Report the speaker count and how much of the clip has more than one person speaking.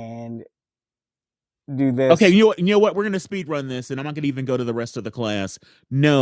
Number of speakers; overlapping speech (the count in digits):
2, about 2%